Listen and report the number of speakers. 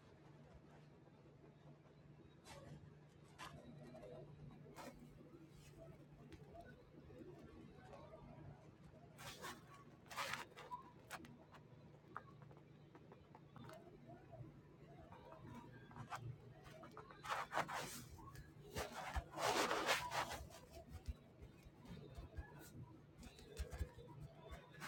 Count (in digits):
0